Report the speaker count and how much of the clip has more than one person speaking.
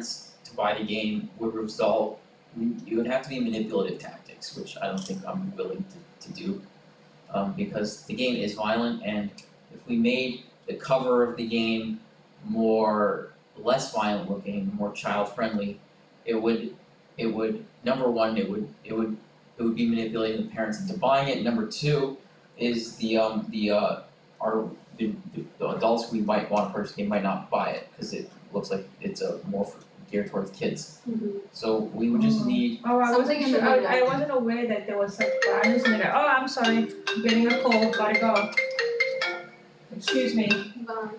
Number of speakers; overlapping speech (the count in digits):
3, about 3%